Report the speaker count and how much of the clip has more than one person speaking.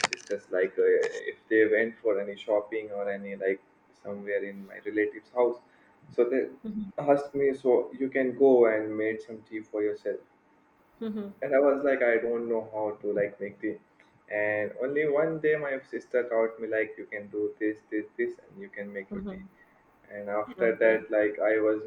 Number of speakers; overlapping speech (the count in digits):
2, about 3%